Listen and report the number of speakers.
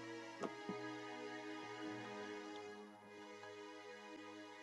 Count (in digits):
0